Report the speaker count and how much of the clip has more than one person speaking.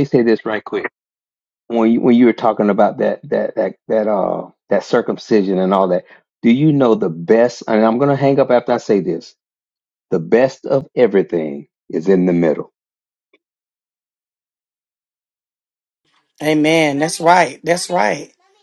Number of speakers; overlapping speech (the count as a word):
two, no overlap